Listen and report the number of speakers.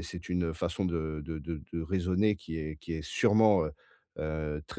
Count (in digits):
1